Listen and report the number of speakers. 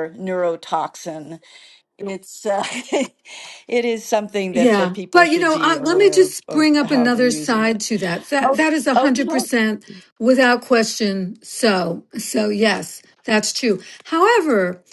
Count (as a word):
two